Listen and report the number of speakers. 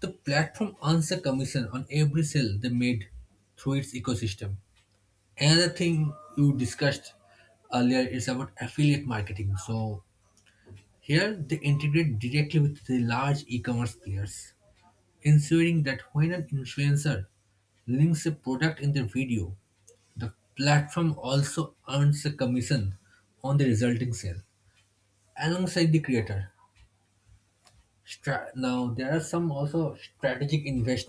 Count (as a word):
one